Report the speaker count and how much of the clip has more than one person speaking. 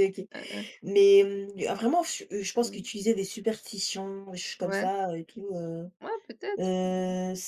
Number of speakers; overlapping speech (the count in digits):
2, about 14%